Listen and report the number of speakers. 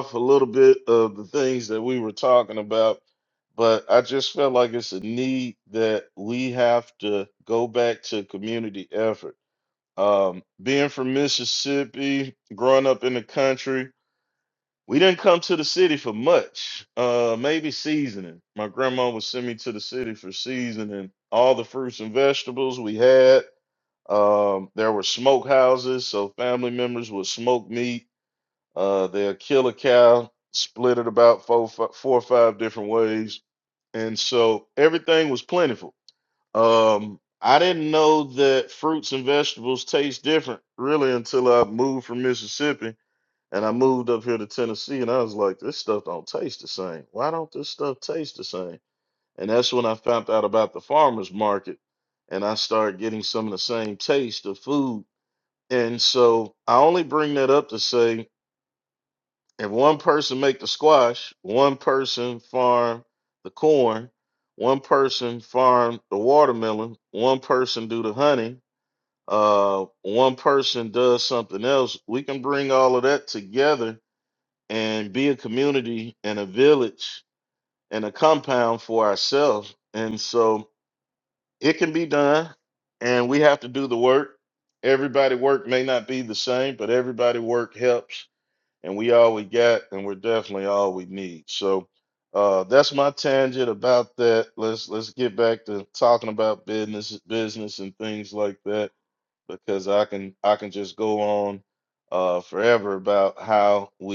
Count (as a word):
one